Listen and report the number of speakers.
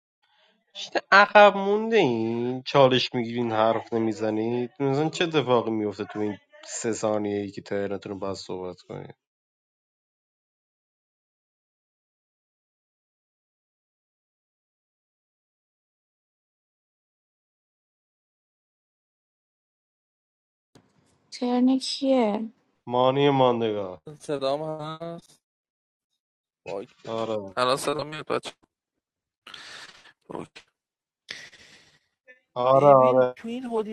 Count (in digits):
3